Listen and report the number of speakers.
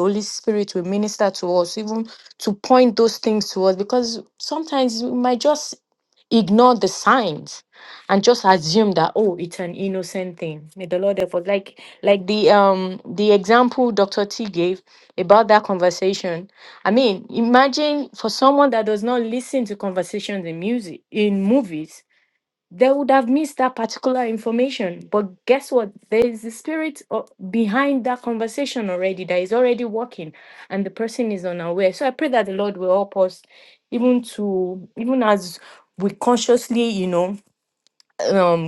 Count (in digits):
1